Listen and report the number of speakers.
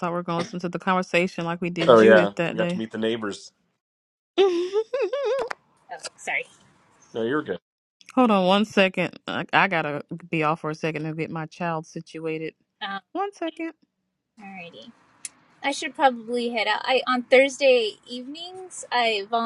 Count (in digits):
3